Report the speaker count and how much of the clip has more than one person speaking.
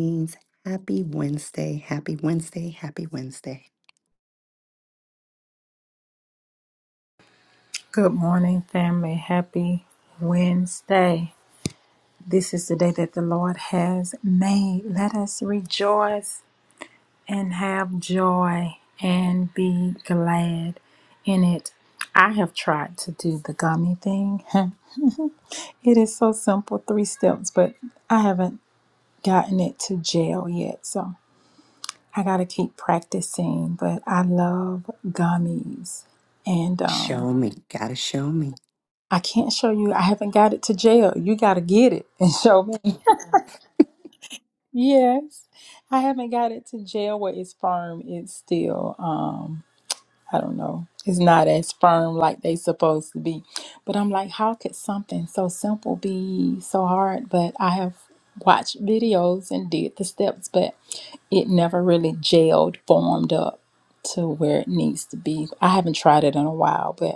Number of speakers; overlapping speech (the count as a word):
two, about 1%